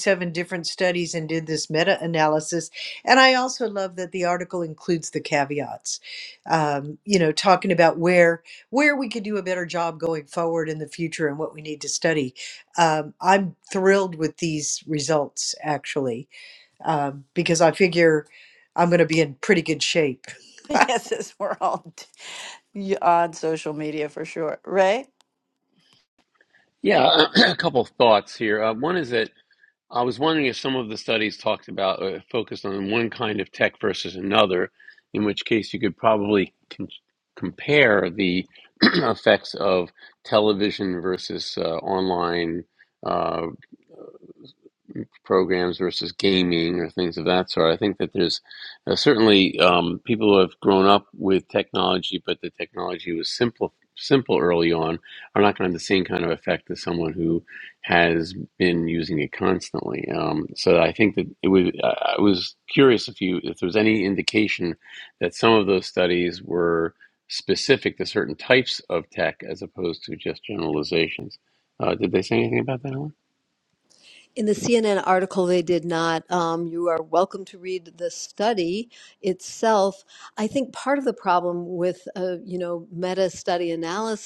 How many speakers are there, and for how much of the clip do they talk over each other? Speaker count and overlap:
four, no overlap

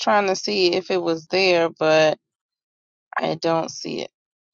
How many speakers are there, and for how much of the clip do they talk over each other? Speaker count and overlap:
one, no overlap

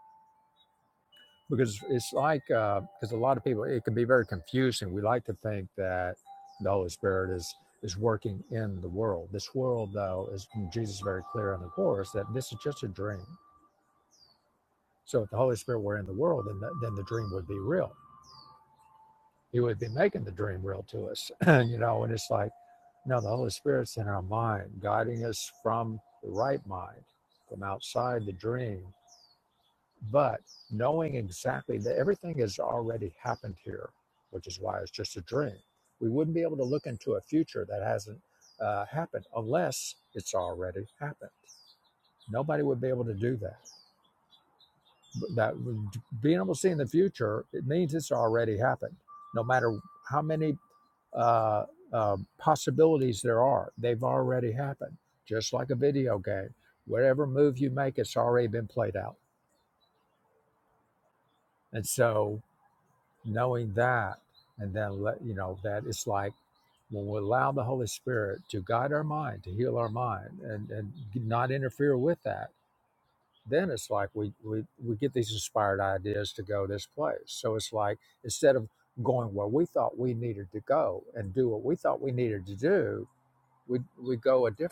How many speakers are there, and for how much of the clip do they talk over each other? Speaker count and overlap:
one, no overlap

